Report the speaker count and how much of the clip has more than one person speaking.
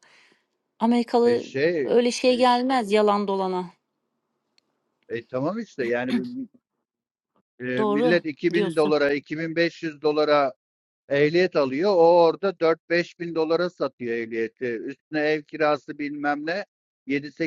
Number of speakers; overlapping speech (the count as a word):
two, about 9%